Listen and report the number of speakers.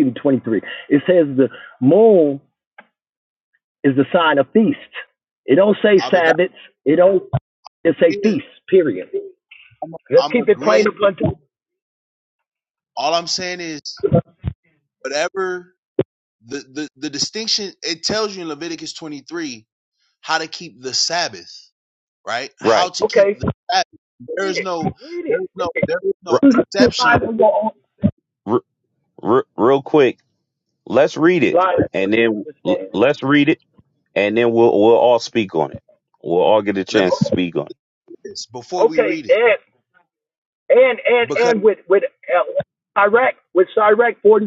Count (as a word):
three